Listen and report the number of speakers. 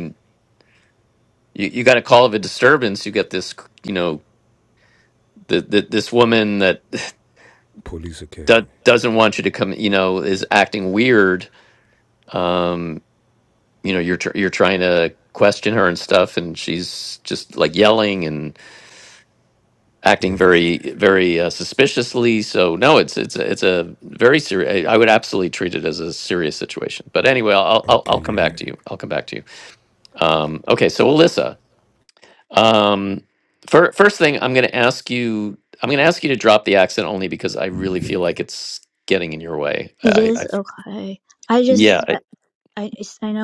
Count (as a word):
three